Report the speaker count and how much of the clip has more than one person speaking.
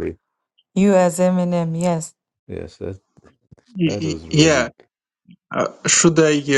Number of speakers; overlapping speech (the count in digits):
3, about 16%